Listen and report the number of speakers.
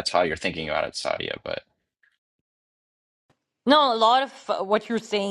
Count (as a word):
two